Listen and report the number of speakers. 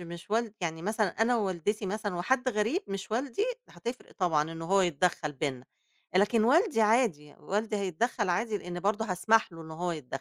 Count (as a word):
one